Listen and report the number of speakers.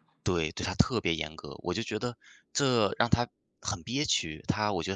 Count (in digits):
1